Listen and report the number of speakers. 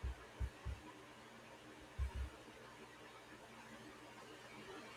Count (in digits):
0